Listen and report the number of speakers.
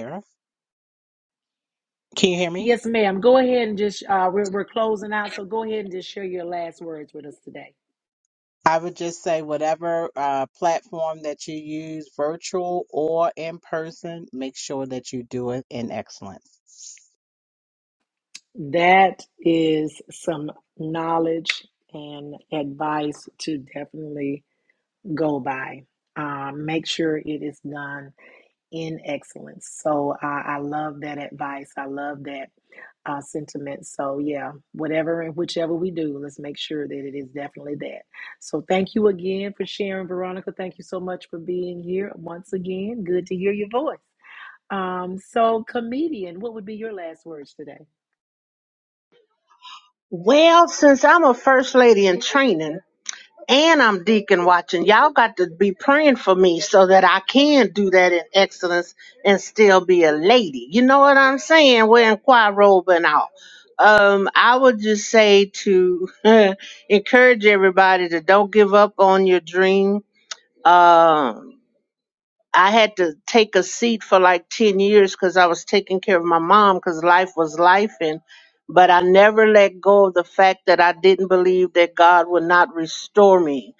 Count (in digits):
3